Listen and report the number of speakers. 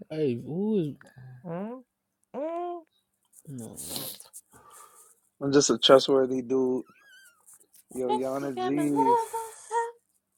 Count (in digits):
3